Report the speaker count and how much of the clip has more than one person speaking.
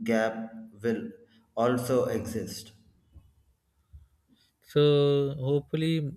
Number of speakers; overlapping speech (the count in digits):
2, no overlap